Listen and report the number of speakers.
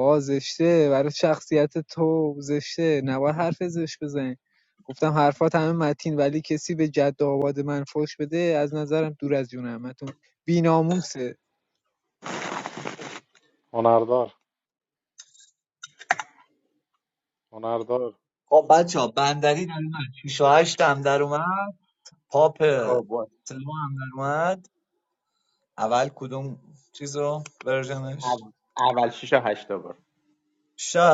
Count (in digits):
4